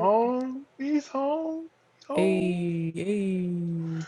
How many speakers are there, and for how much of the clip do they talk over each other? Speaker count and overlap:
two, about 14%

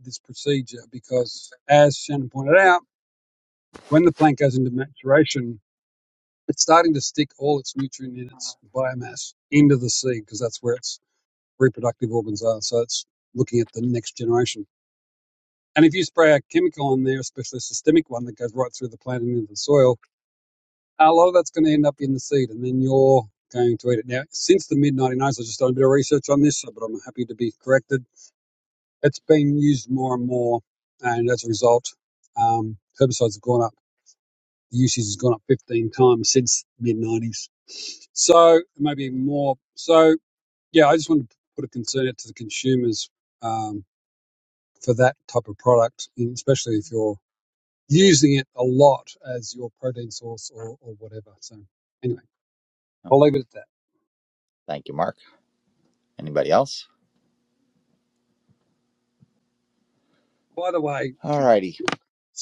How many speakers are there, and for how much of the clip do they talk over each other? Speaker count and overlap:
two, no overlap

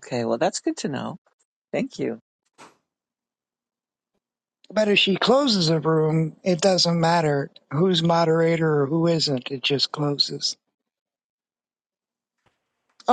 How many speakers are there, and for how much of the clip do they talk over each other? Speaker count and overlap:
two, no overlap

